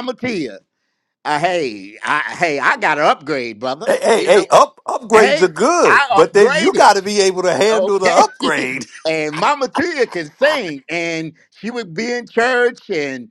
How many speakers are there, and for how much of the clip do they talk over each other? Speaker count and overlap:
2, about 20%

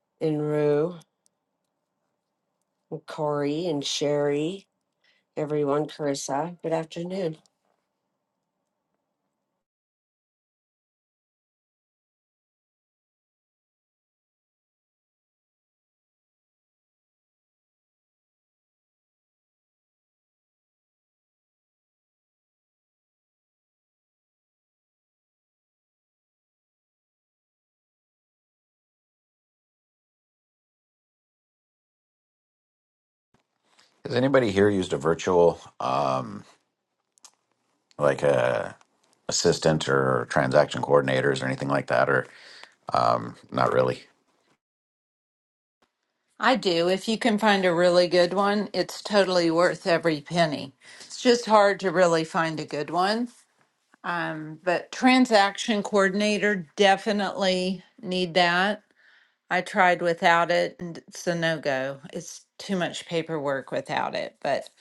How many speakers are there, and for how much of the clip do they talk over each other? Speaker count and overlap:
3, no overlap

